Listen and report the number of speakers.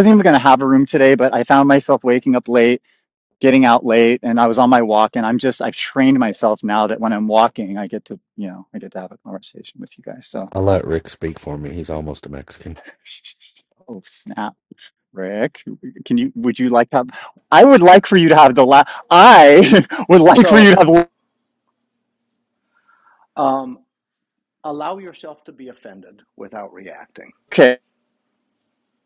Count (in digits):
3